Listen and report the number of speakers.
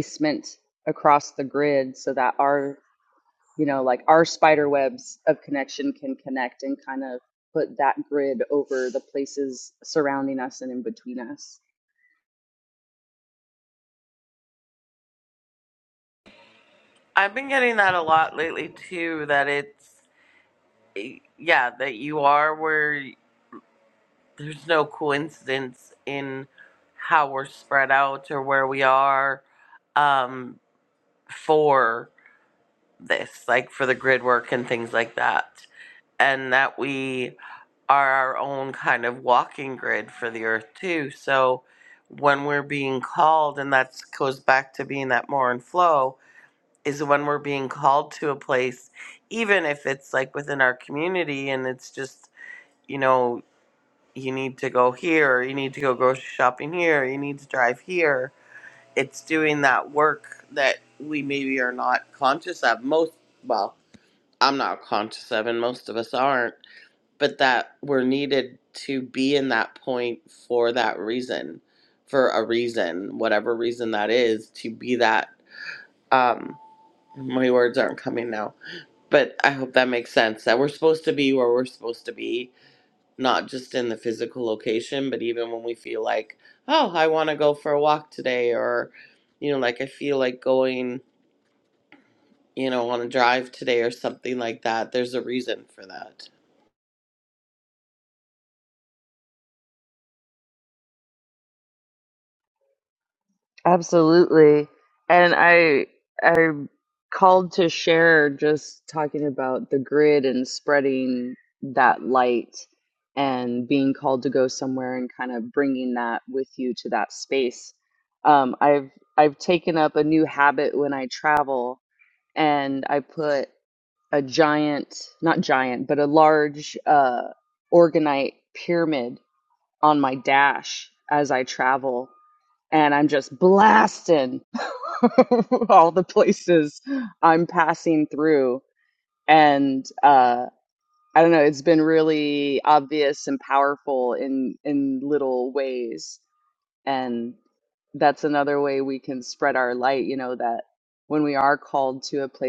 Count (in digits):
2